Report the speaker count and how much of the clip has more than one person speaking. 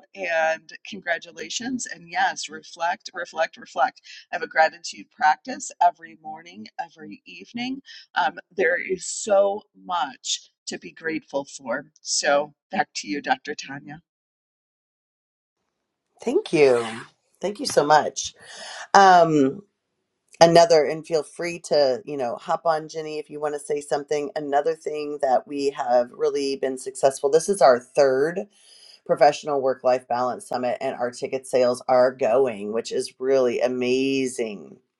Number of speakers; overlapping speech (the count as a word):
two, no overlap